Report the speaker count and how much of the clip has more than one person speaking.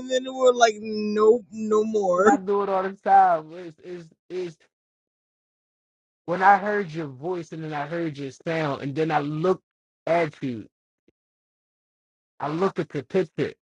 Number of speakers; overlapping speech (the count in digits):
2, about 2%